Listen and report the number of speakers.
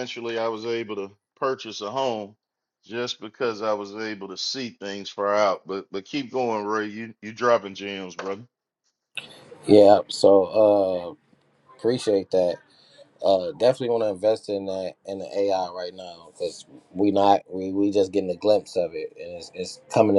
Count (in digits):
2